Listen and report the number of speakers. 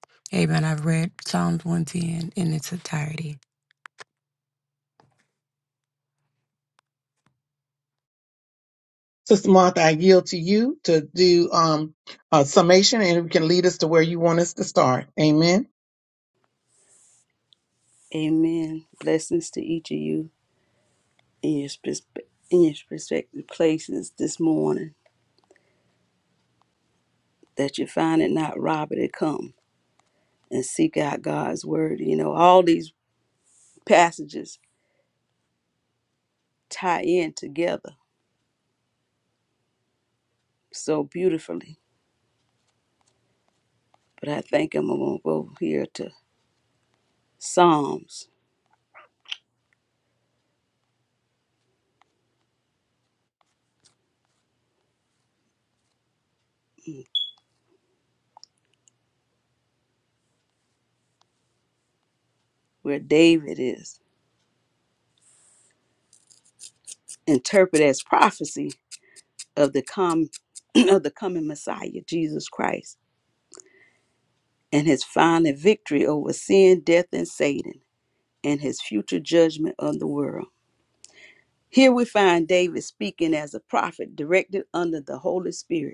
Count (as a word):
three